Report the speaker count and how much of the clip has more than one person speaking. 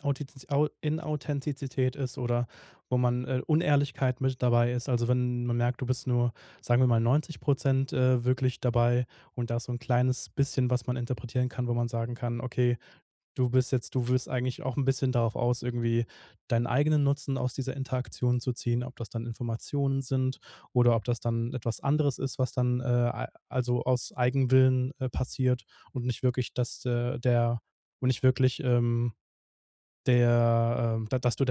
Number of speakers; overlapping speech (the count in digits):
1, no overlap